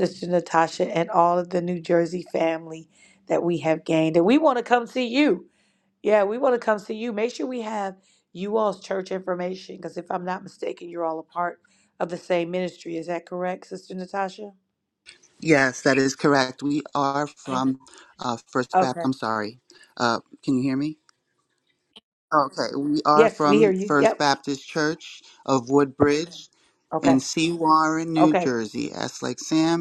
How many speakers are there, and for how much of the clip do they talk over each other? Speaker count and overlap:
2, about 7%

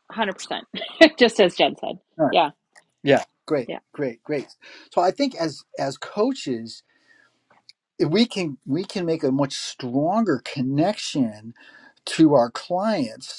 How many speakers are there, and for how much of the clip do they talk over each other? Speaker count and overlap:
2, about 1%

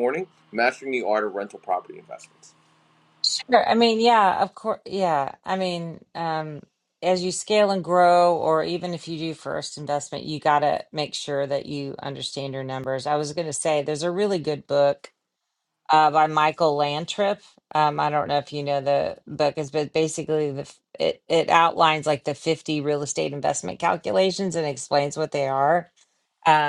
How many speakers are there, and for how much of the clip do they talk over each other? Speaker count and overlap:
2, no overlap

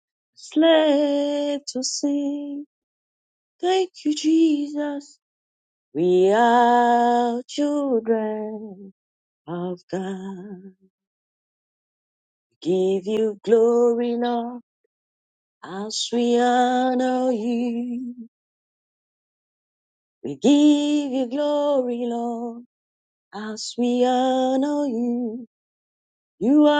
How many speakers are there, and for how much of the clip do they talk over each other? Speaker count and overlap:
1, no overlap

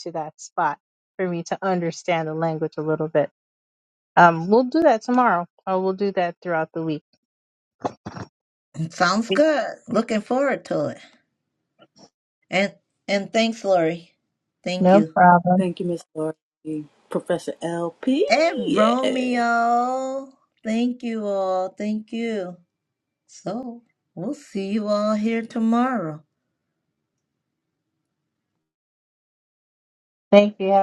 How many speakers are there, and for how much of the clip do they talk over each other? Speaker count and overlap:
3, about 5%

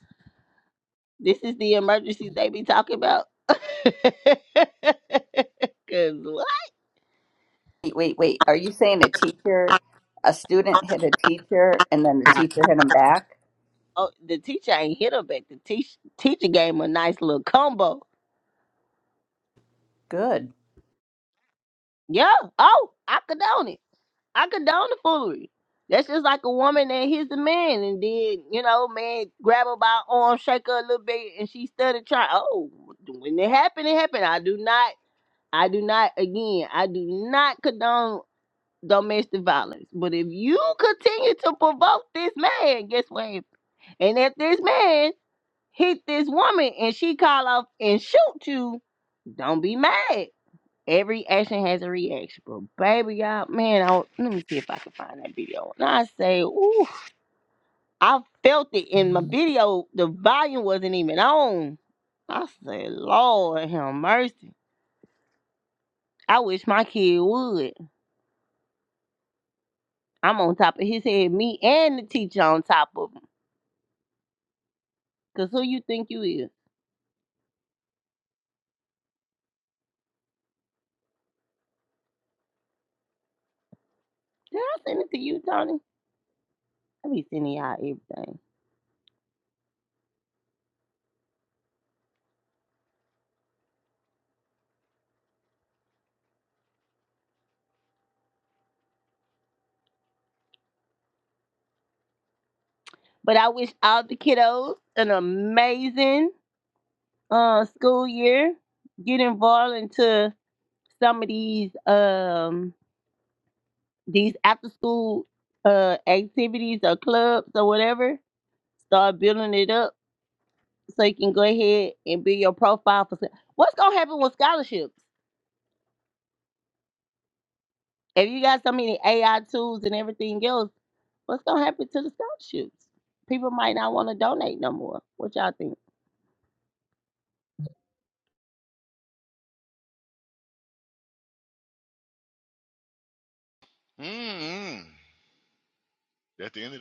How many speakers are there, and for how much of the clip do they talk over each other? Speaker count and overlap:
3, no overlap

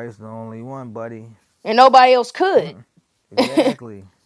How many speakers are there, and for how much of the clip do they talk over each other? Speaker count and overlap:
2, about 6%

